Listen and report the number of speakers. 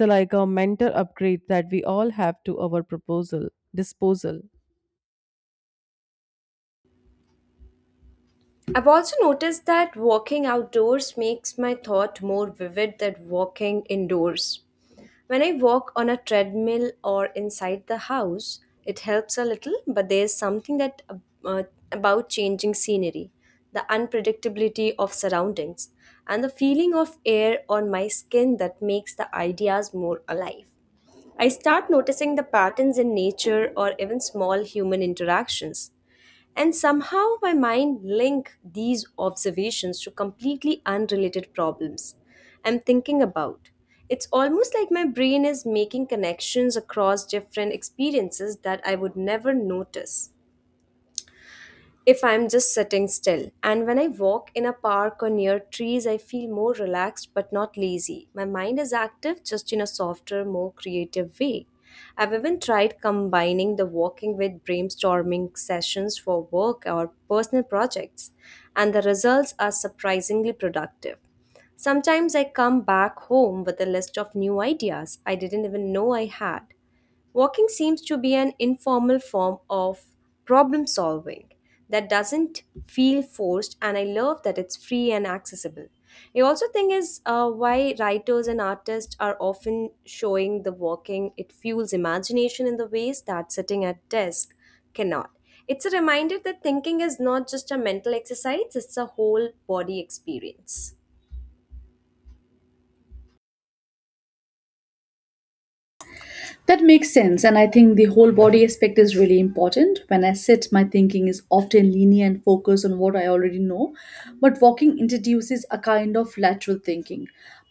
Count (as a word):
three